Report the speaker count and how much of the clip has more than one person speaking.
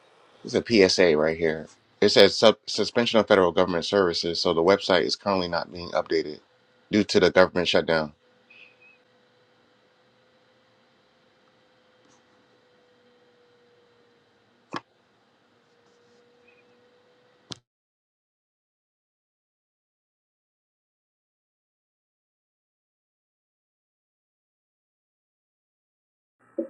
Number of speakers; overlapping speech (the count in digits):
1, no overlap